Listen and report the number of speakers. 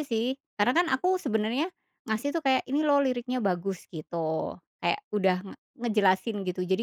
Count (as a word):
one